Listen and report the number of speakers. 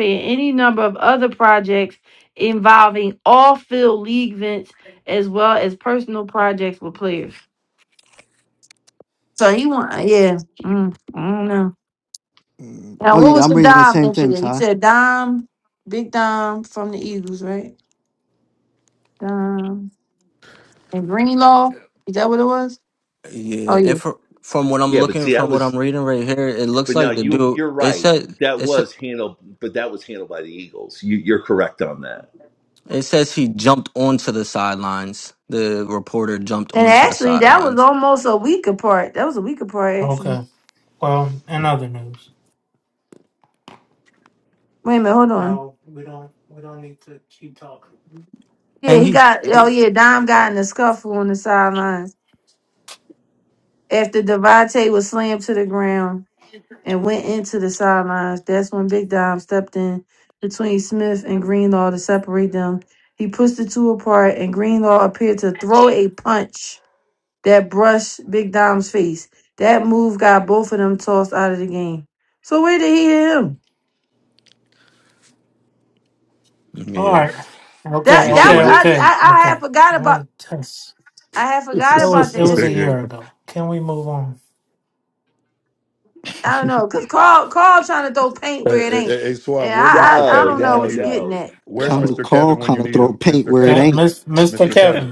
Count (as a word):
five